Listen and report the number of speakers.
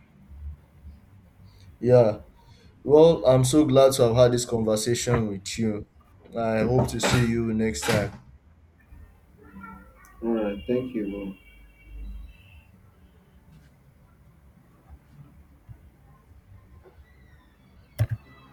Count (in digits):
2